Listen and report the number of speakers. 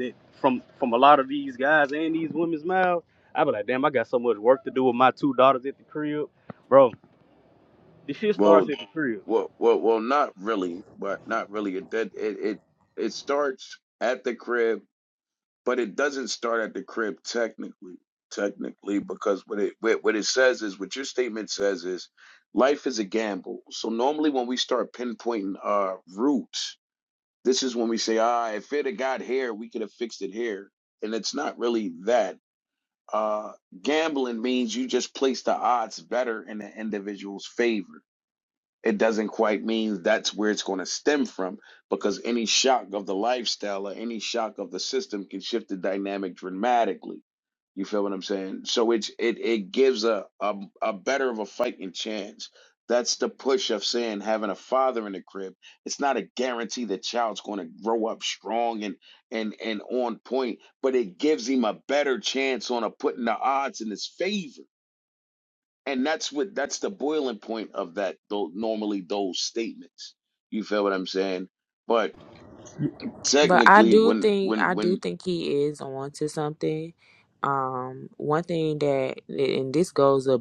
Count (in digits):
3